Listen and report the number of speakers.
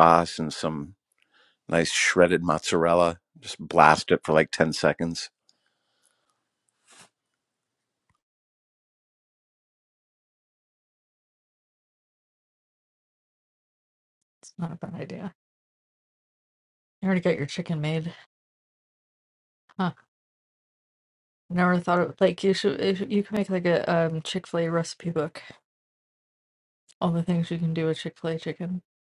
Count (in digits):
2